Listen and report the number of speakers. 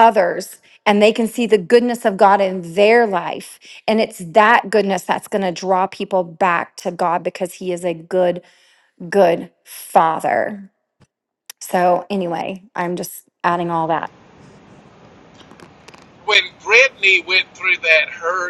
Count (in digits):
2